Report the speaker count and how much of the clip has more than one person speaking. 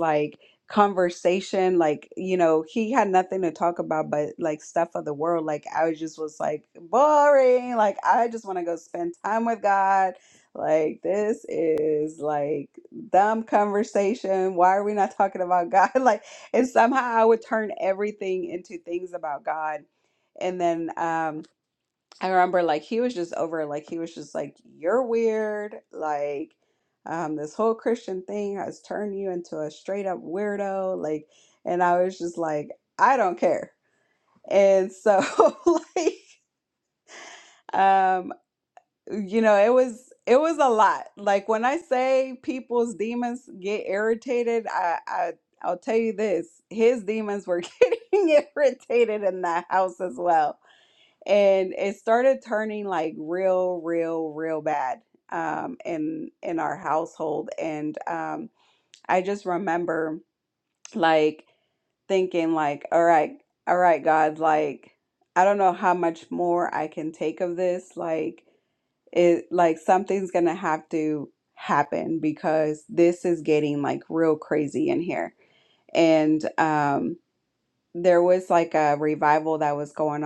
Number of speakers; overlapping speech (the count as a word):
one, no overlap